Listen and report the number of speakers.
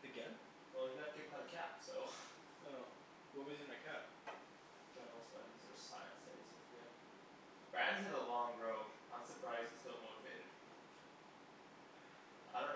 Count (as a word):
two